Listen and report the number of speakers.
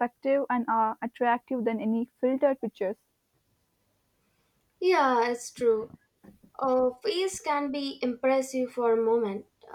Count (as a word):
two